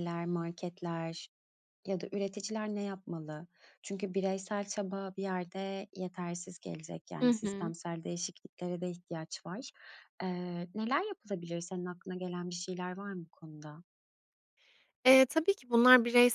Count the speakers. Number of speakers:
two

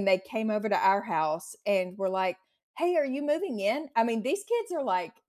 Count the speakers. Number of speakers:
one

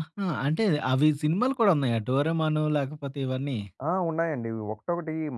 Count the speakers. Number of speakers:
two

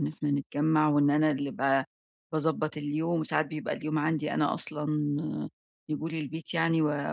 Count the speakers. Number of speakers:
one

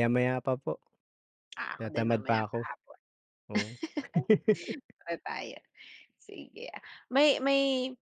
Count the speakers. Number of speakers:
two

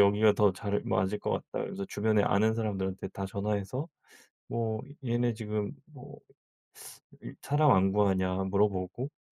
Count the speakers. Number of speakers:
one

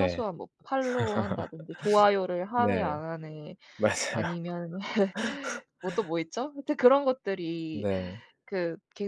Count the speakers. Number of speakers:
two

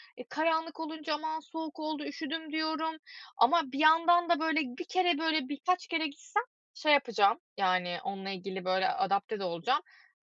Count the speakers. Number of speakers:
one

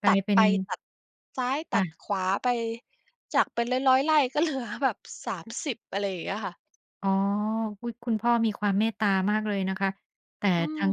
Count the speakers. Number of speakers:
two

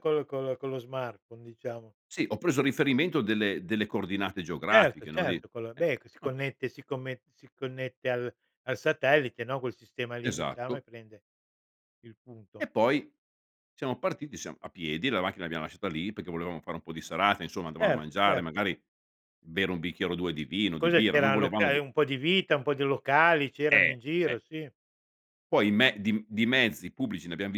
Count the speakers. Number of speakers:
two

